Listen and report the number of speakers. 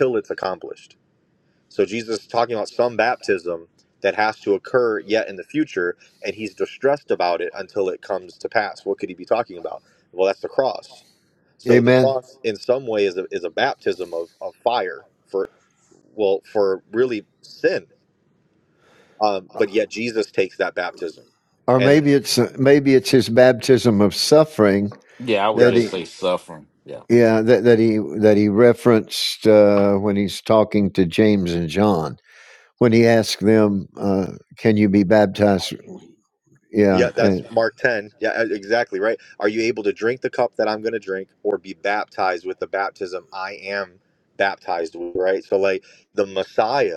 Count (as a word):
three